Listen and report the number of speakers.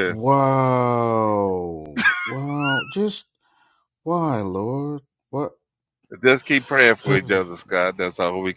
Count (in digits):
2